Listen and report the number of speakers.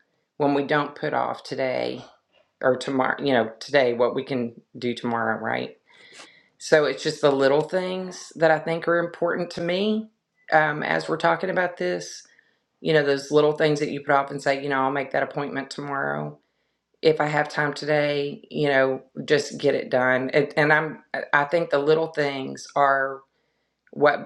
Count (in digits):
1